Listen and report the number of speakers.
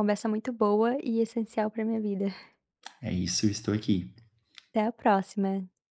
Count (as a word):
two